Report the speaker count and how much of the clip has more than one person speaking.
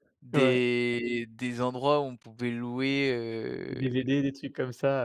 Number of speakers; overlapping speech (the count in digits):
2, about 14%